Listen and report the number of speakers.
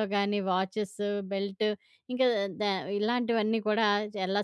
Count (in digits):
1